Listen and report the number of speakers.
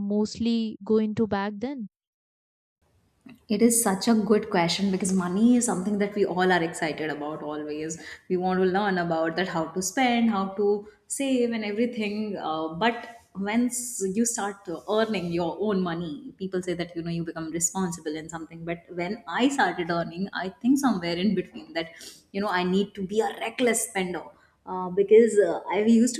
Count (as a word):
two